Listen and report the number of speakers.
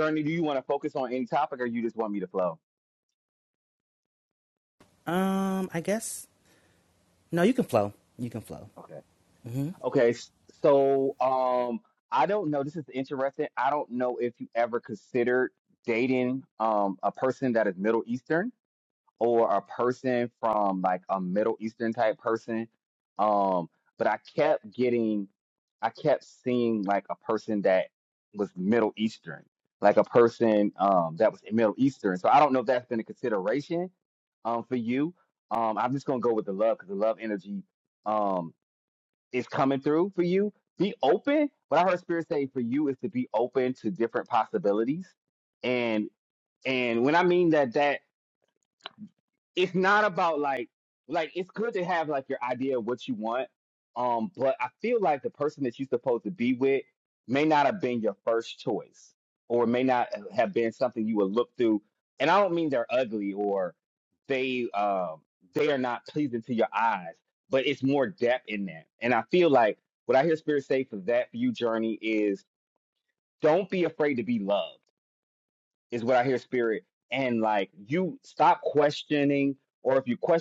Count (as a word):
two